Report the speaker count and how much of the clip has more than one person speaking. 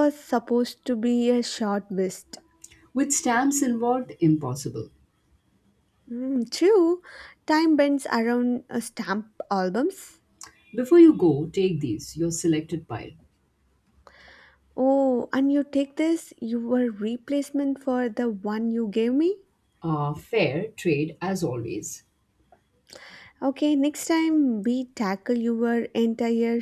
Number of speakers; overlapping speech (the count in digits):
2, no overlap